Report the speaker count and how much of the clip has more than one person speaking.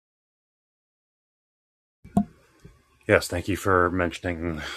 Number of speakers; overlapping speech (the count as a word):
one, no overlap